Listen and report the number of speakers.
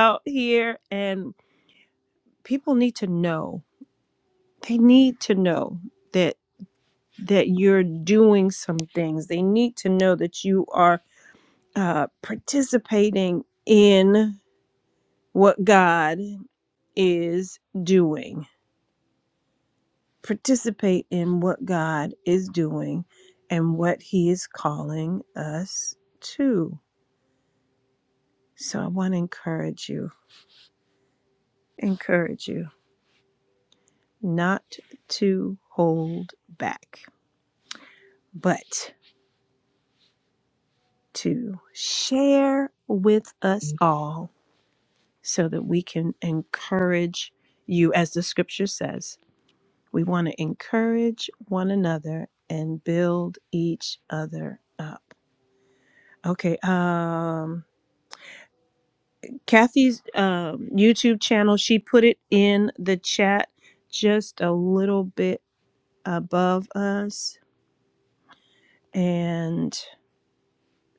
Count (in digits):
1